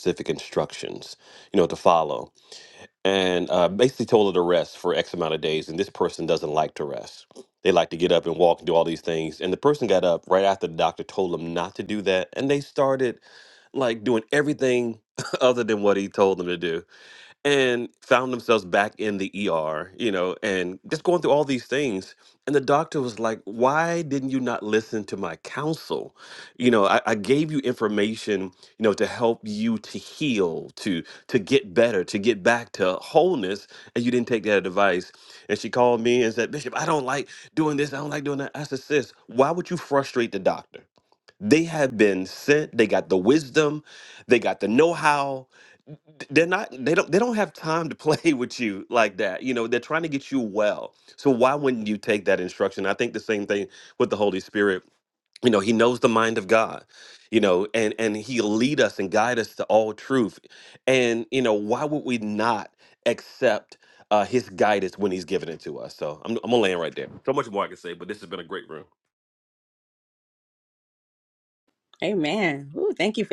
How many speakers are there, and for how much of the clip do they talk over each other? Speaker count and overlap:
2, no overlap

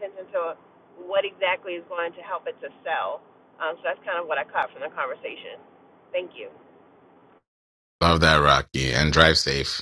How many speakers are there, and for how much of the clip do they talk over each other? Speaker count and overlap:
2, no overlap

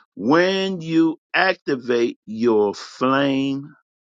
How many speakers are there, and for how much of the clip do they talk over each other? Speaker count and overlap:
1, no overlap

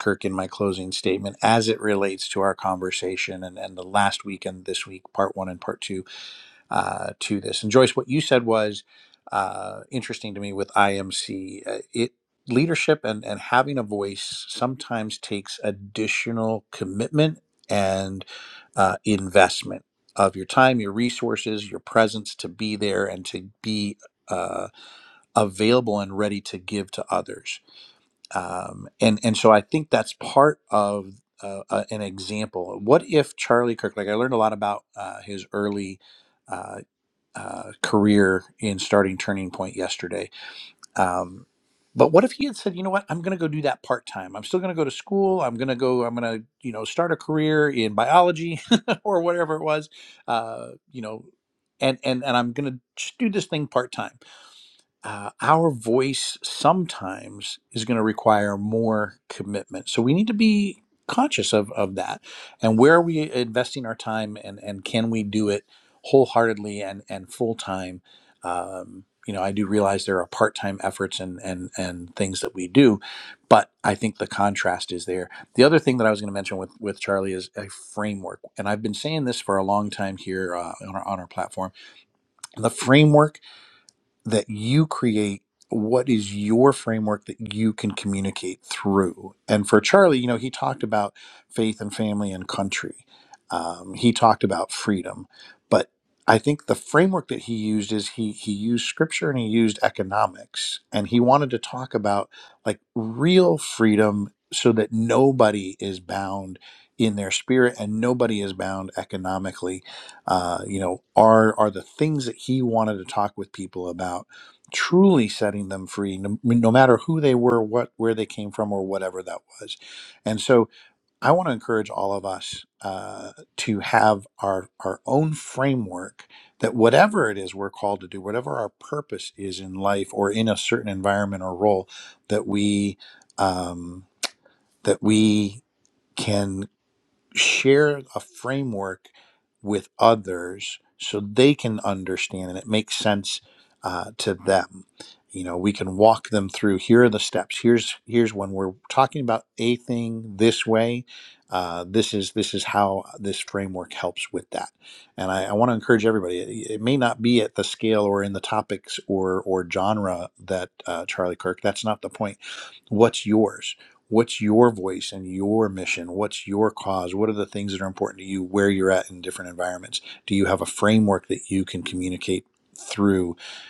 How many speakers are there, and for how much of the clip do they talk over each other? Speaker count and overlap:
1, no overlap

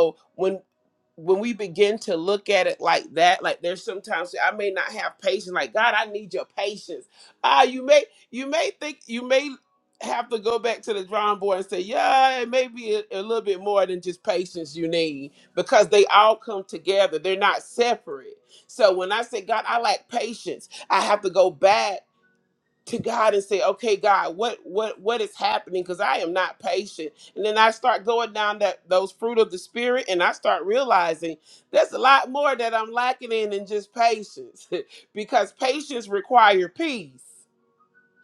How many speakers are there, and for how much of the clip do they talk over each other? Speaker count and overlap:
1, no overlap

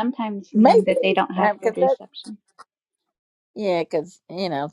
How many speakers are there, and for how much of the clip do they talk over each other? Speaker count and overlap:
2, about 19%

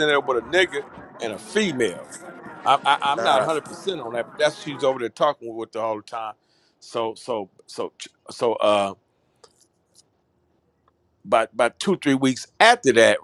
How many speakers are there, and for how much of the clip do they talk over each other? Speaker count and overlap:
1, no overlap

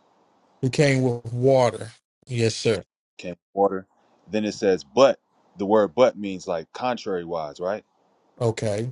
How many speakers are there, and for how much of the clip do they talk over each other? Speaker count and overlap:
2, no overlap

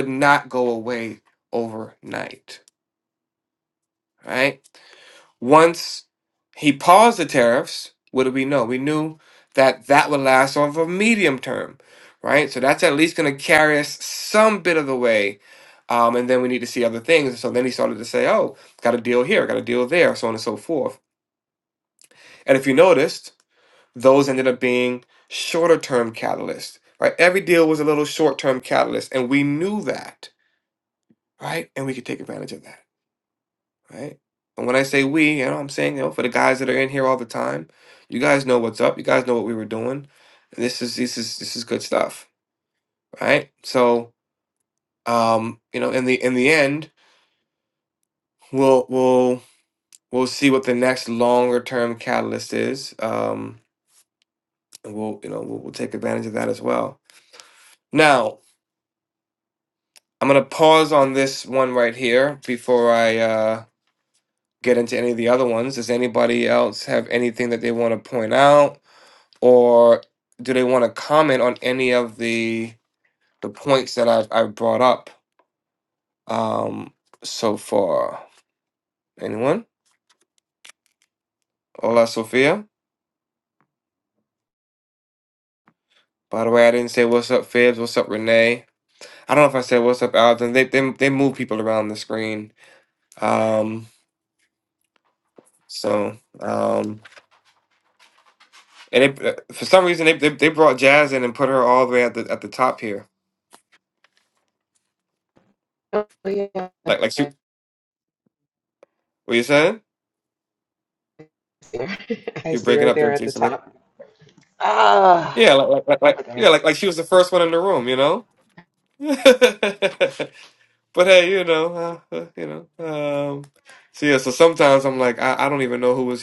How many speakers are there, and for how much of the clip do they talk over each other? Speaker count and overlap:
2, about 2%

